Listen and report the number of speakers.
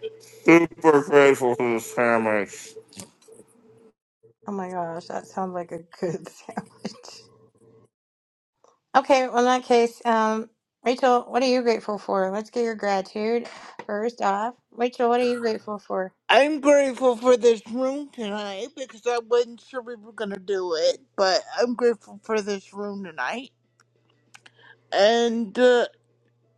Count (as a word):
three